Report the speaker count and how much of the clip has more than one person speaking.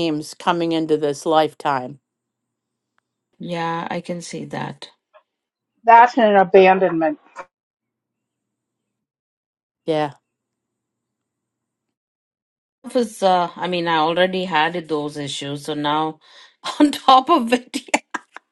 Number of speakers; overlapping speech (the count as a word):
three, no overlap